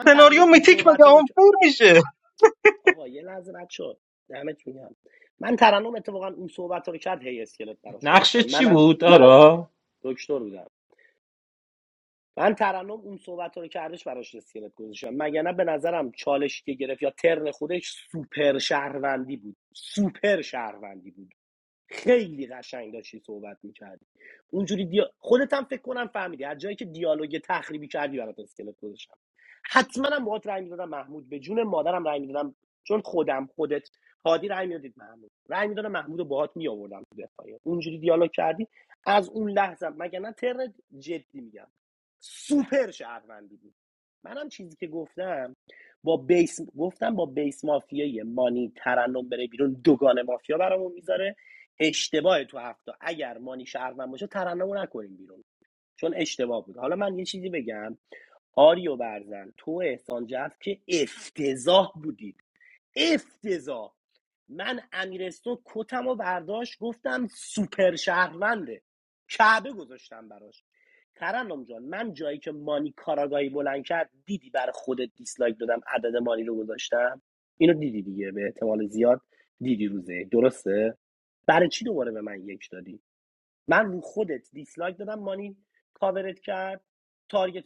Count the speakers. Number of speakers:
3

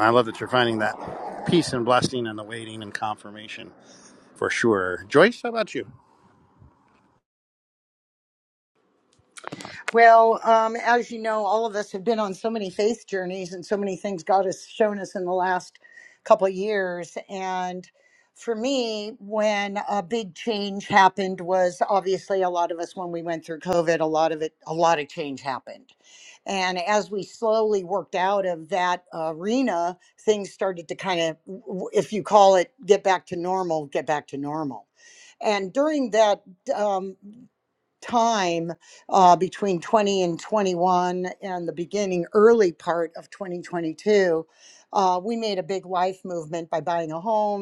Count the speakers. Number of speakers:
2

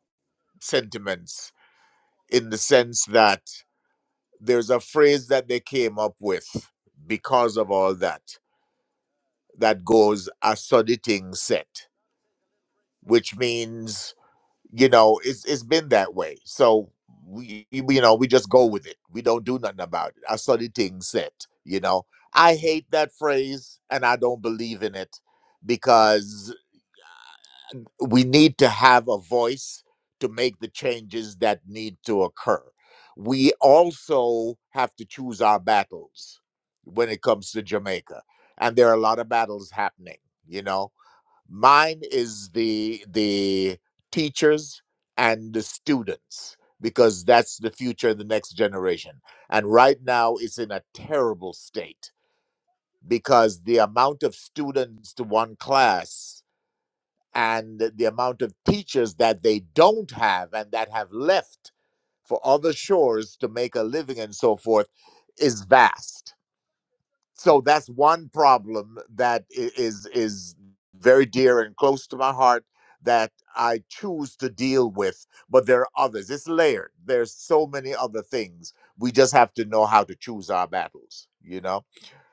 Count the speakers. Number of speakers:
1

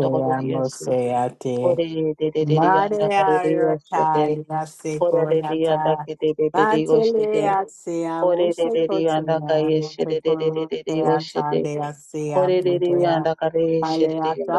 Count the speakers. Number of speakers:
2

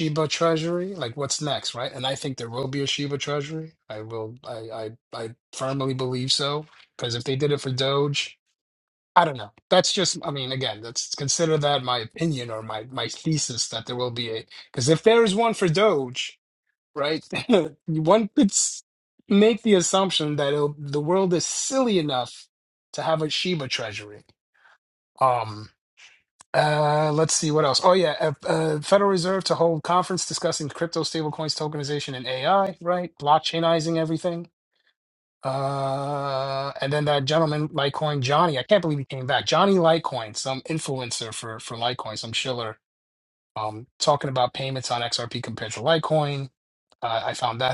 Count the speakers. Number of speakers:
1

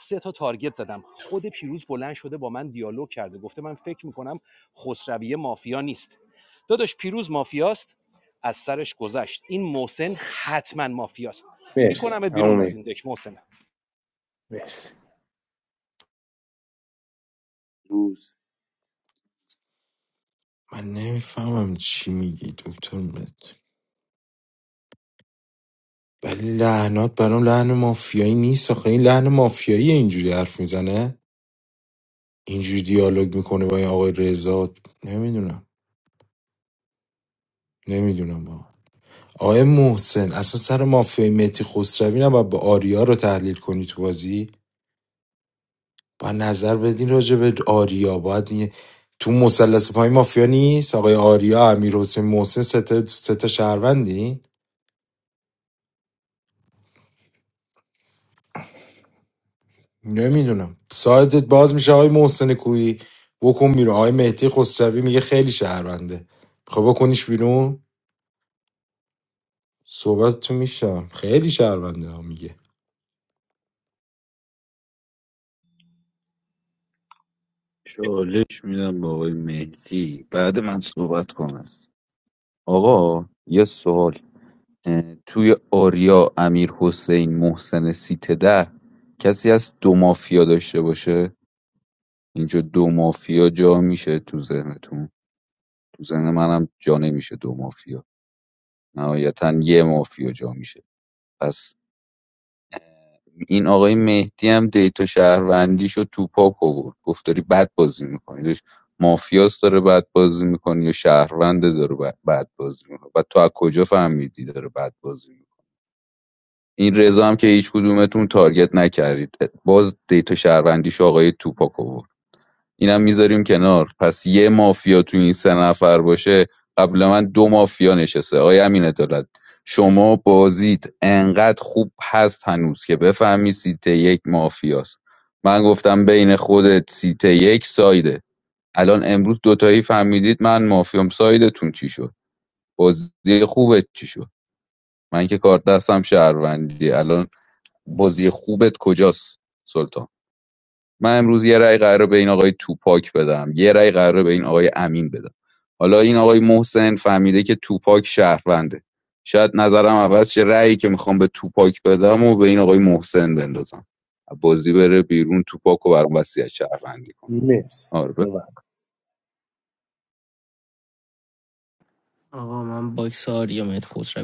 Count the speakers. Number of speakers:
5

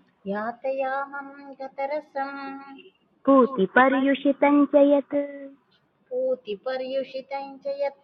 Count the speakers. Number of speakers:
2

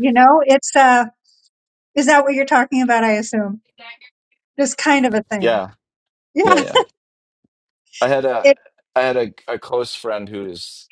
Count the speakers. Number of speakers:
2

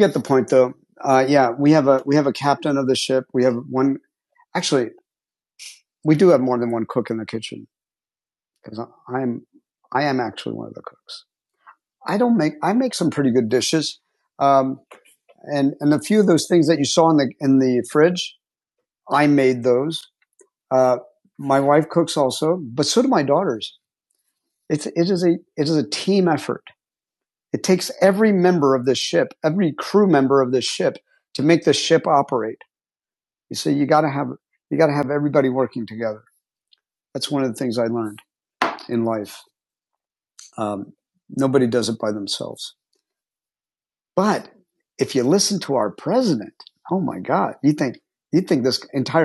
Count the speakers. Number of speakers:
1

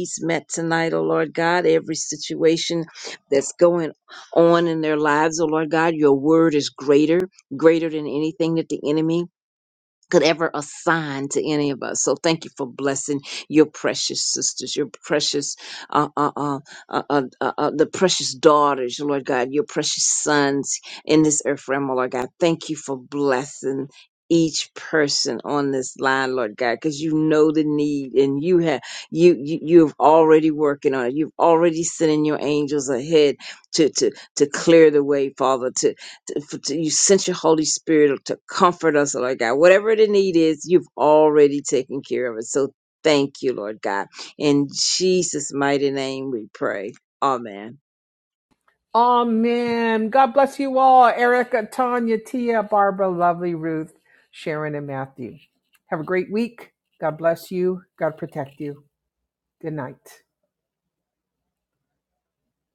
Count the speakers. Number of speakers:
2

